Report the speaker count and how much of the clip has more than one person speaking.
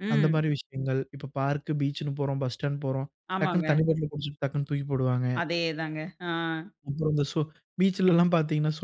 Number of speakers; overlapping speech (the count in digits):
2, about 8%